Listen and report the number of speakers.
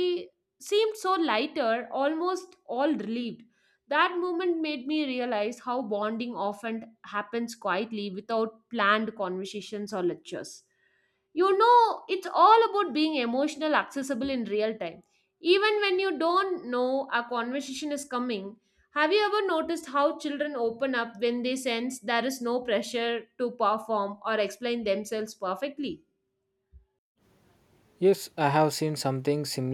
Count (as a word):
two